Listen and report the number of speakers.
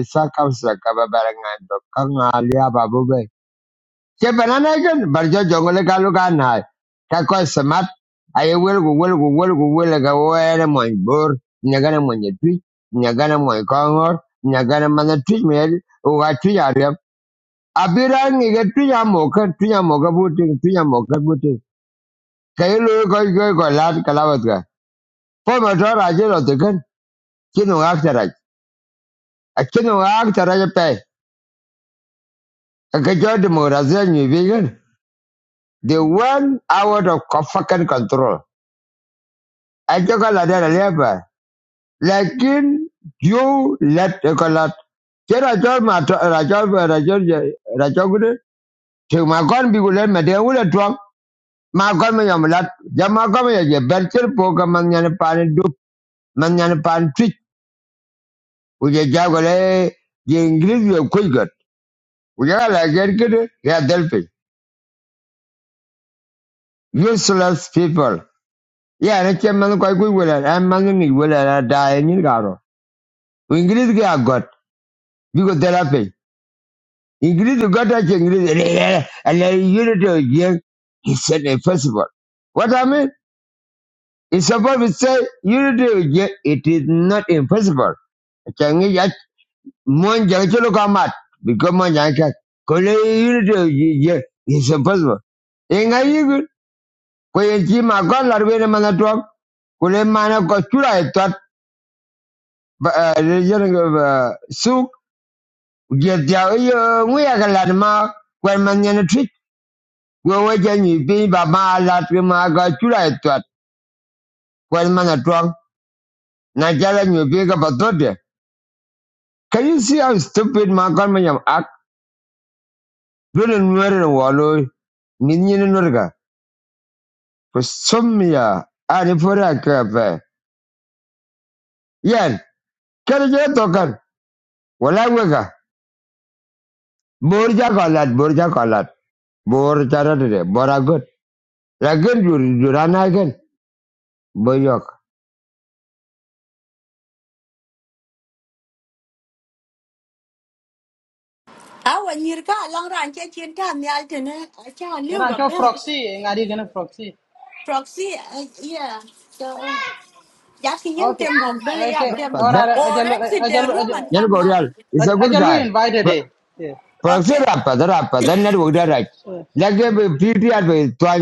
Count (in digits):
3